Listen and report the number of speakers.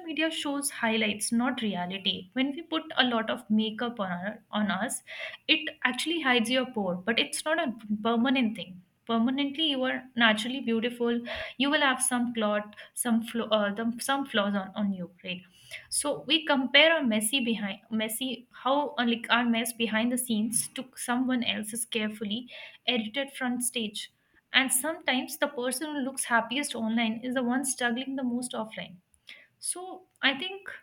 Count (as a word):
one